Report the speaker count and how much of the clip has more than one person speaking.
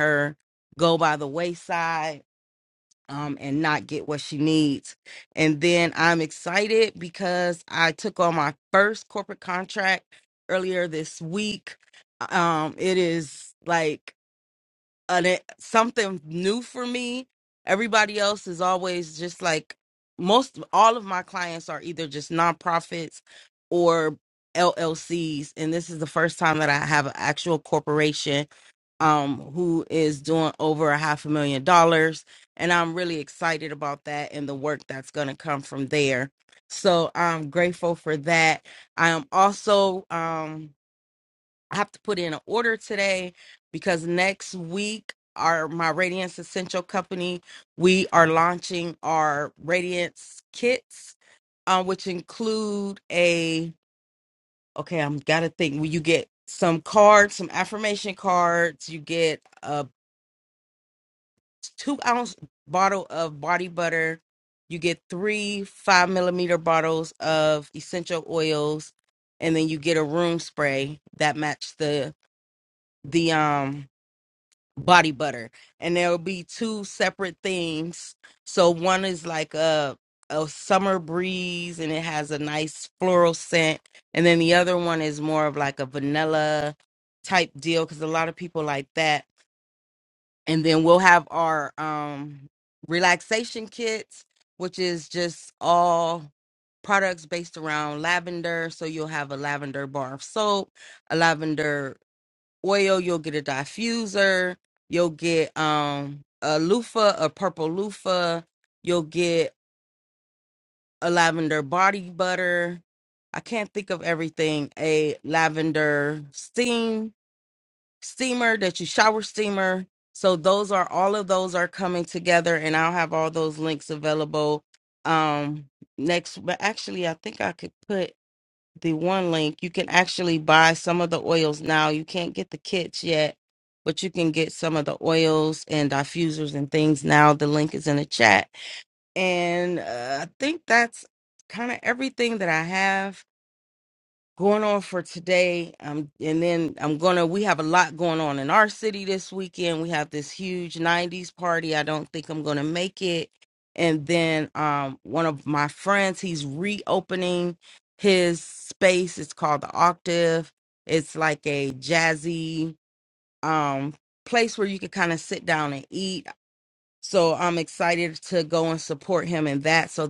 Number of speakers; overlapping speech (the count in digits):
1, no overlap